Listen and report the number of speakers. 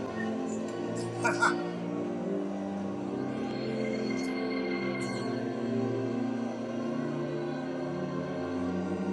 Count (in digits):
0